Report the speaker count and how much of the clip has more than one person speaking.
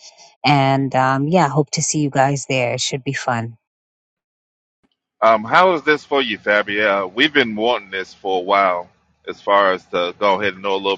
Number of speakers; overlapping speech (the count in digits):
2, no overlap